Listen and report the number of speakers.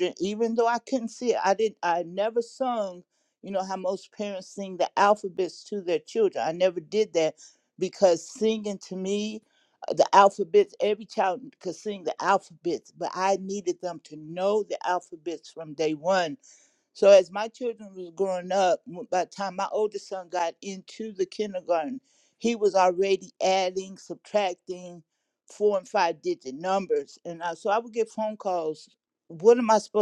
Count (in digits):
1